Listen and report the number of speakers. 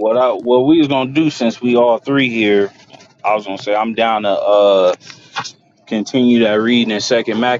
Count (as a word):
one